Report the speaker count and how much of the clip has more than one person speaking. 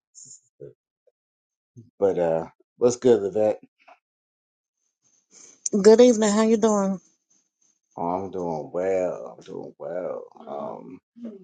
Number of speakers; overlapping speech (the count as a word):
two, no overlap